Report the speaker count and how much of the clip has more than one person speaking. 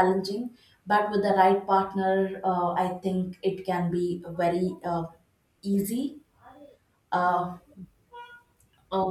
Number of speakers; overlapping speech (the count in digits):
1, no overlap